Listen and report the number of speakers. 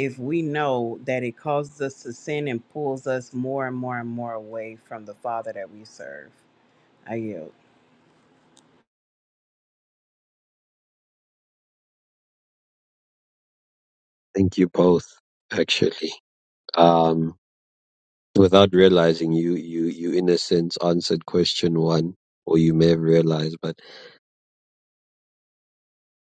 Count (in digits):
2